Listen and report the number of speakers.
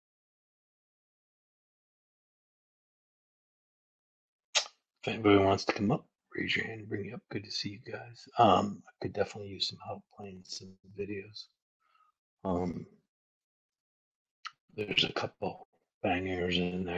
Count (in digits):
1